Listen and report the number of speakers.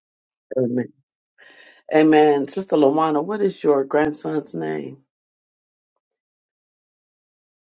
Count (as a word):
one